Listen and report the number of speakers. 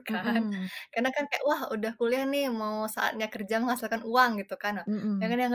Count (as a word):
two